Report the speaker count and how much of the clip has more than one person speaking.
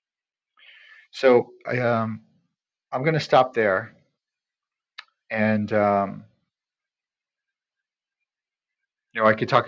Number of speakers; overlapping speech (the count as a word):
one, no overlap